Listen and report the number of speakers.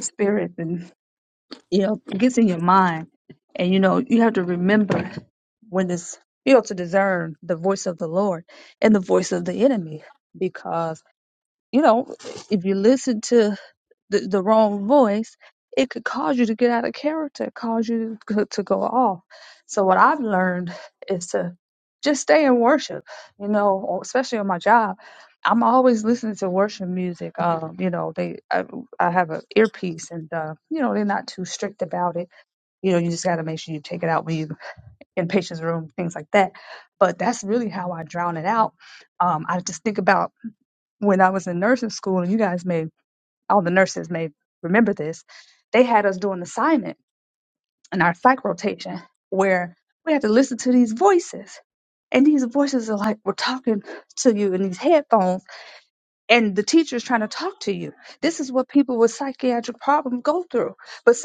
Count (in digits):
1